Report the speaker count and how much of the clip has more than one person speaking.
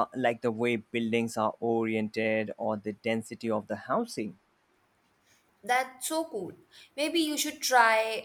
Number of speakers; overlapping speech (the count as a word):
two, no overlap